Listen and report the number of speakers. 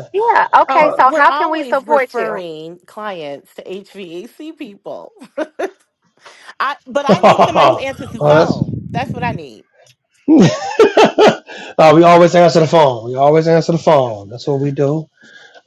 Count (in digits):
3